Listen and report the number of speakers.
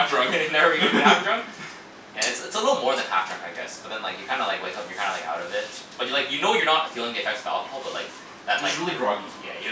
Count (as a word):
two